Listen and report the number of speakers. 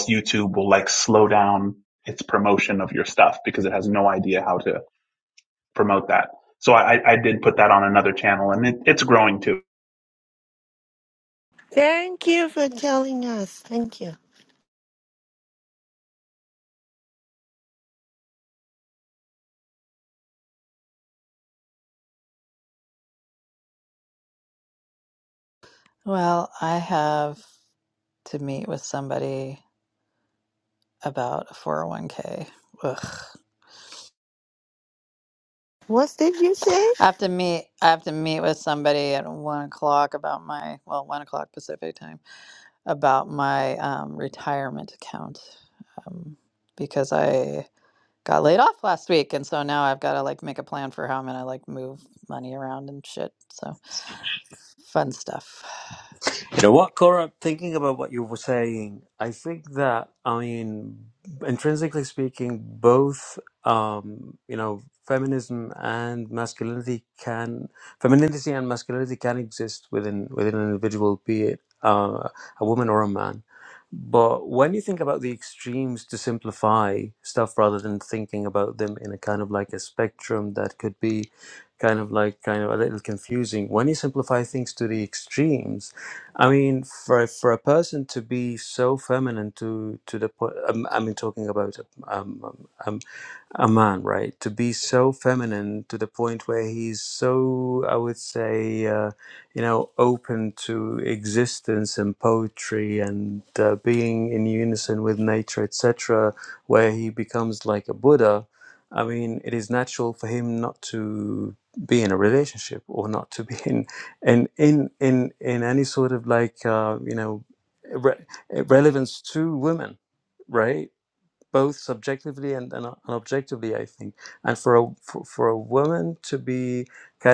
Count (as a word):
four